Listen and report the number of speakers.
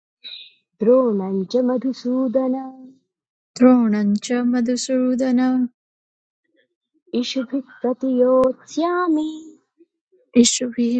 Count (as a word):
two